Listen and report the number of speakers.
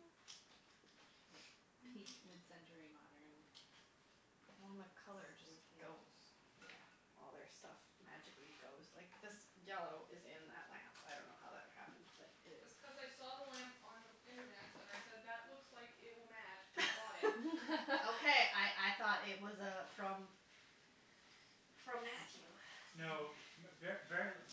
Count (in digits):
4